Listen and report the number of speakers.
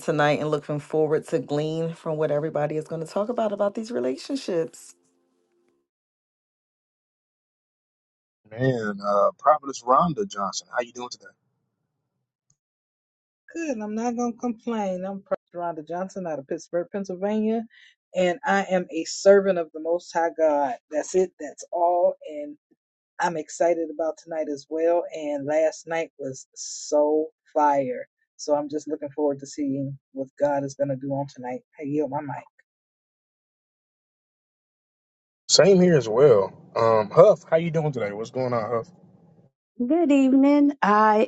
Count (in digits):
4